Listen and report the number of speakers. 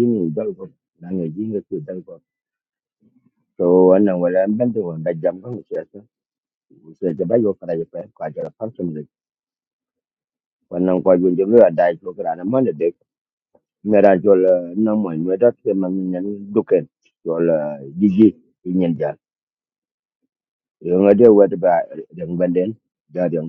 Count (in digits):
1